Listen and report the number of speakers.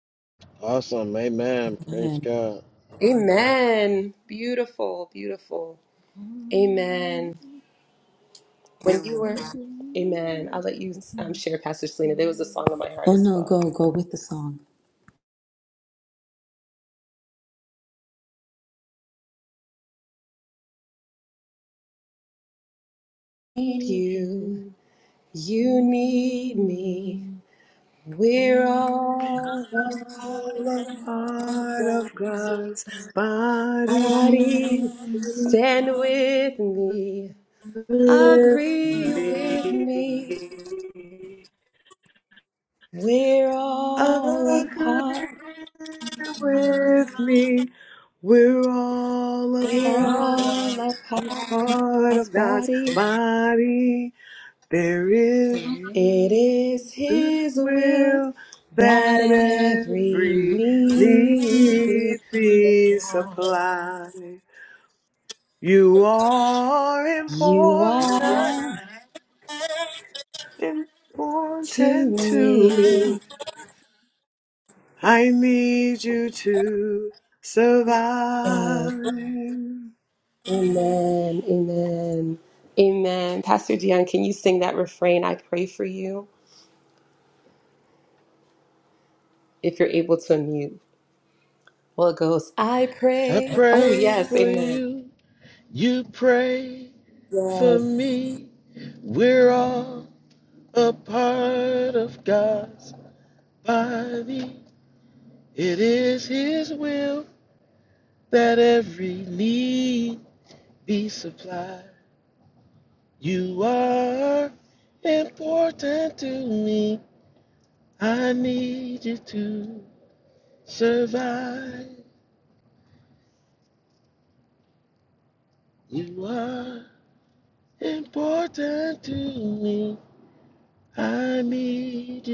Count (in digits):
4